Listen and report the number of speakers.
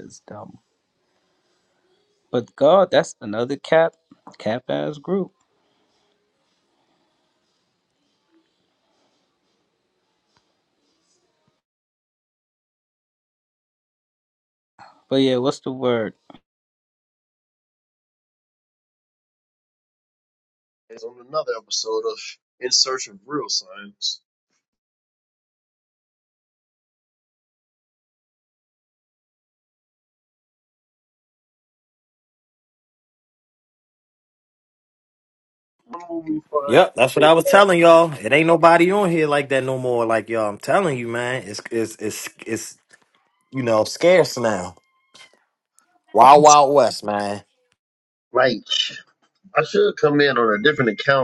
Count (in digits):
3